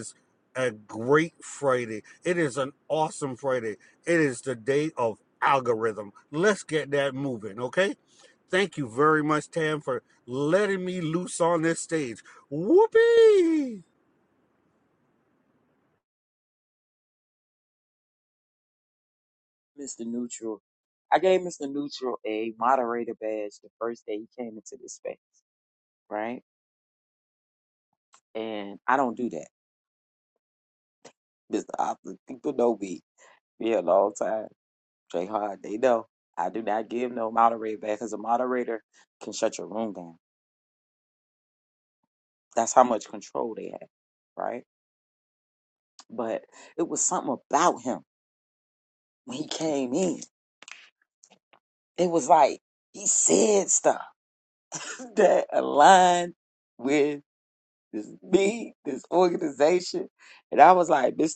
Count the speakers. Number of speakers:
2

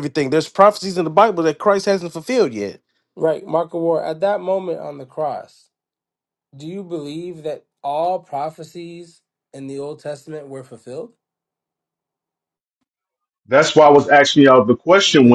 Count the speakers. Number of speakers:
3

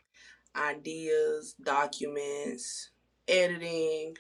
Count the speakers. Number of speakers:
1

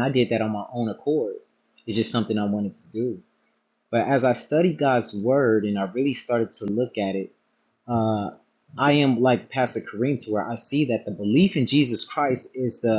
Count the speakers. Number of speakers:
1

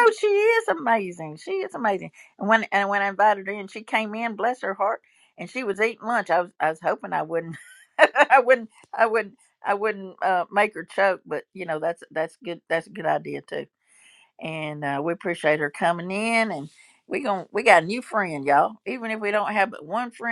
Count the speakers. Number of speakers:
1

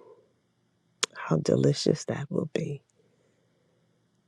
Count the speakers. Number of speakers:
1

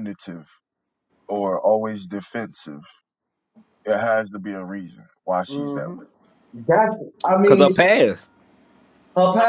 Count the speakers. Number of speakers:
3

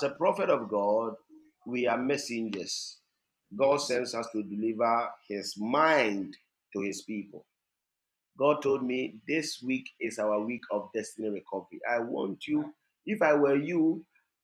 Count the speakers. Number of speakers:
1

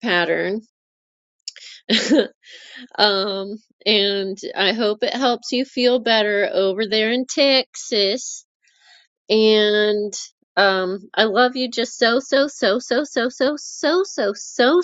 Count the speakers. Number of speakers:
1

